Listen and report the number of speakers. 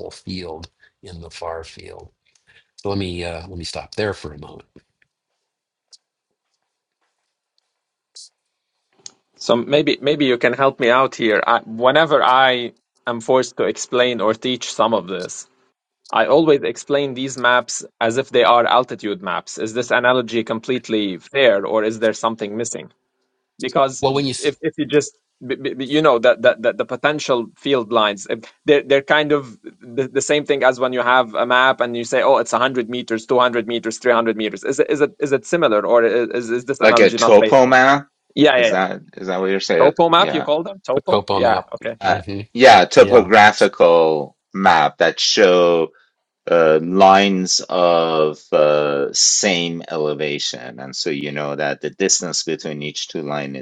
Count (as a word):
three